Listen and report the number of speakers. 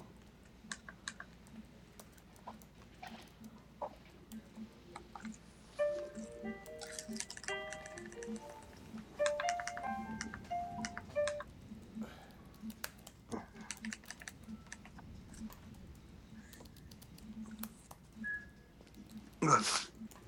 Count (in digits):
0